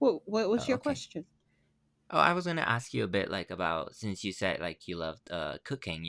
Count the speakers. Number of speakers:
two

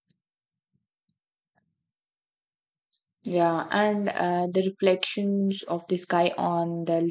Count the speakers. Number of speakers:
one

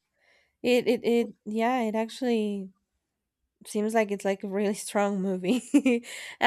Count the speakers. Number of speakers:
one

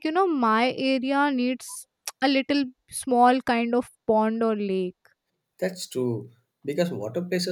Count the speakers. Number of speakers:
two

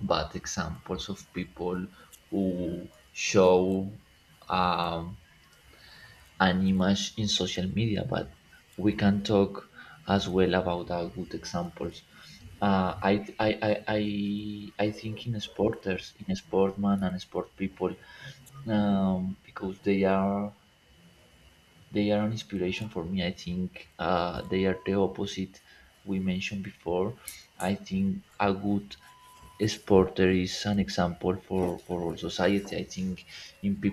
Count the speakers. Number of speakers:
one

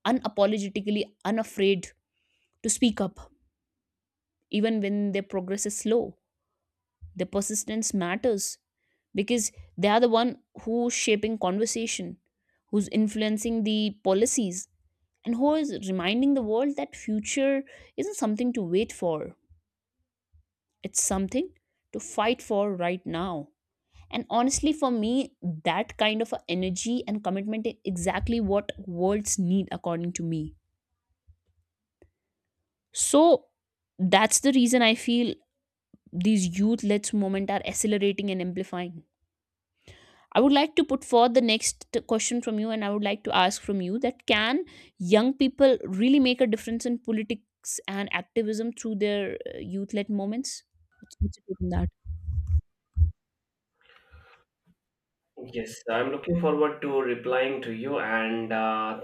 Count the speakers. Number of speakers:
two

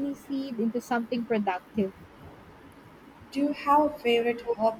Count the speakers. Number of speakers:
two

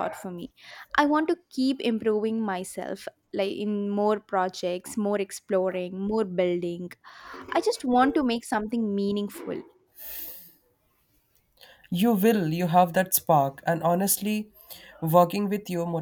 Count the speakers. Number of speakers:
two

